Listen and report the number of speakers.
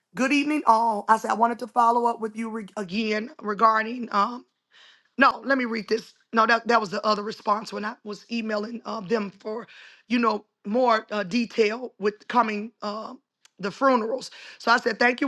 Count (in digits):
1